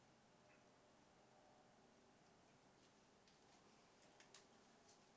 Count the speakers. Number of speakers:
zero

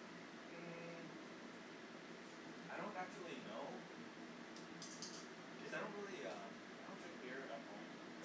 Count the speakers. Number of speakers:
one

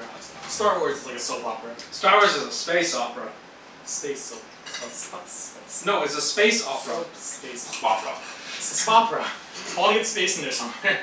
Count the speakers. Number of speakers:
three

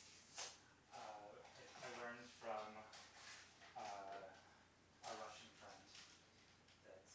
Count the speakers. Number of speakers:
one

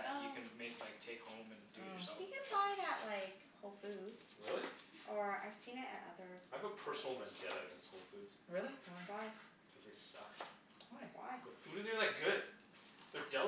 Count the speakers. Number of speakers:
four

